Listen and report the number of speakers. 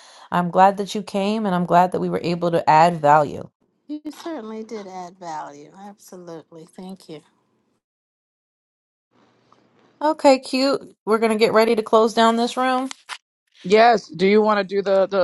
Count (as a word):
three